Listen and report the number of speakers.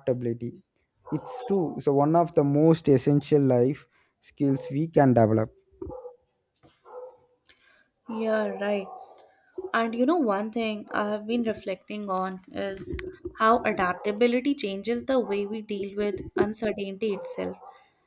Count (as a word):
two